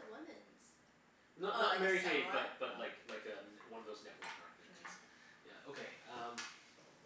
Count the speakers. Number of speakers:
two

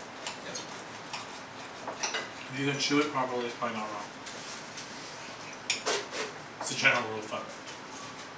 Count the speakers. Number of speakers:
one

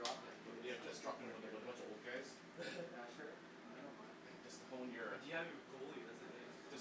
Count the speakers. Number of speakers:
three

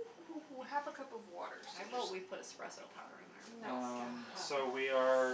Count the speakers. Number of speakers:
three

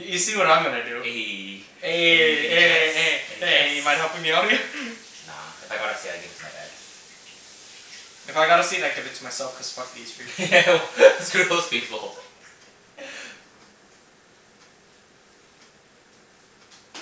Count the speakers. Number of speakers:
two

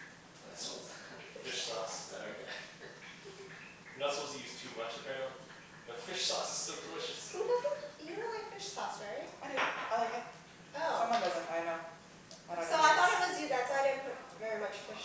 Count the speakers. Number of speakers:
four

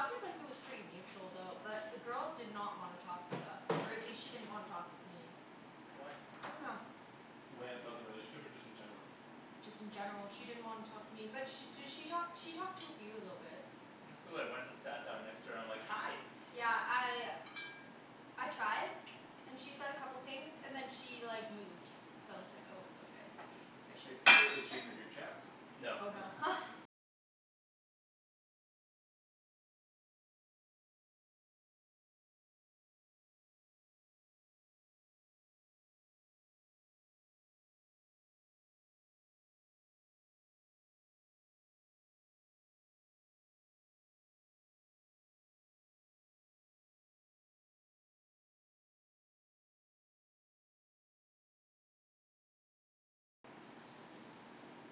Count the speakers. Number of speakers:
three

